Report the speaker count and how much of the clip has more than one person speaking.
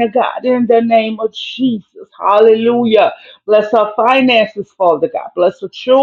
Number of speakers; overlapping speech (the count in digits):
1, no overlap